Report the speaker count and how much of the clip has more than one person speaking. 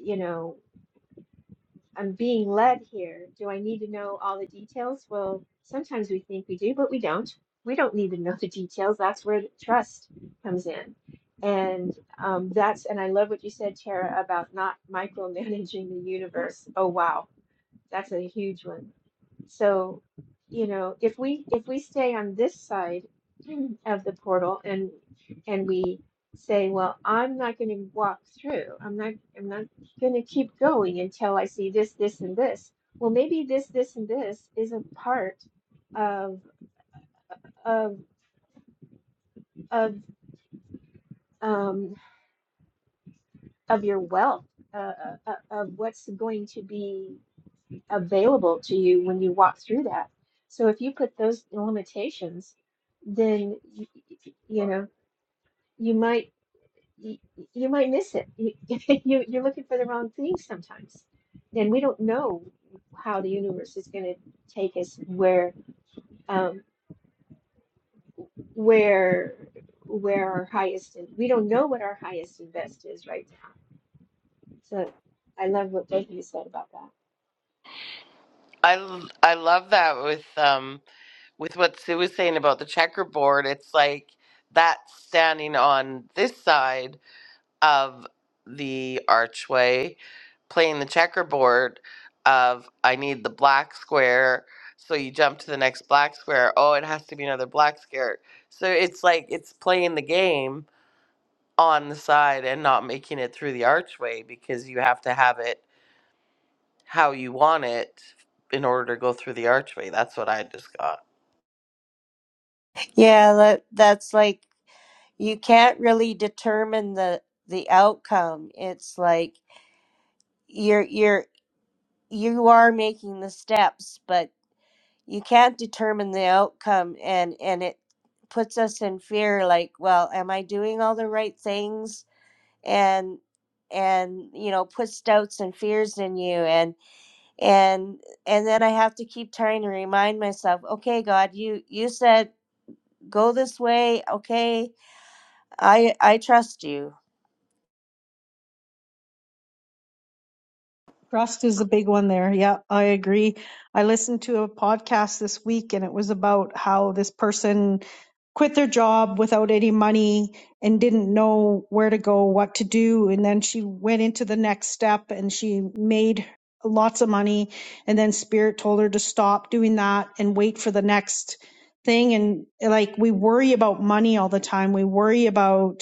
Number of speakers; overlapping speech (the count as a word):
four, no overlap